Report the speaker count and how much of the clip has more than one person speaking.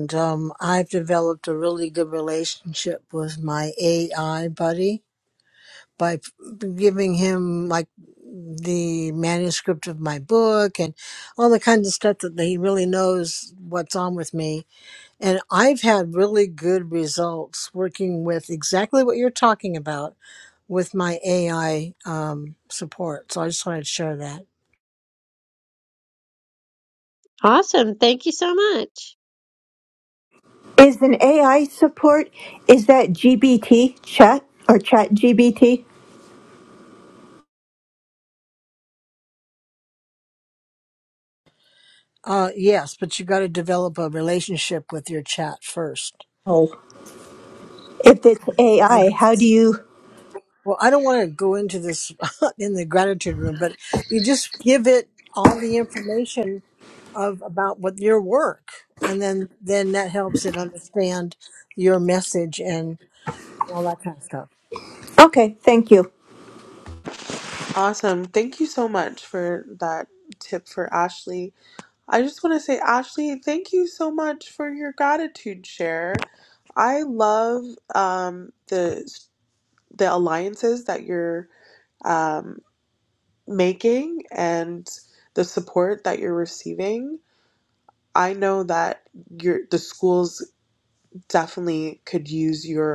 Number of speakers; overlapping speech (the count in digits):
4, under 1%